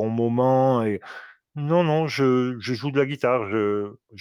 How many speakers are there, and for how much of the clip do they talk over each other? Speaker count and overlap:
1, no overlap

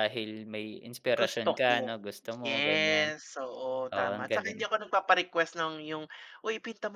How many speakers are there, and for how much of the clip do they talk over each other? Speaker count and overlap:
2, about 32%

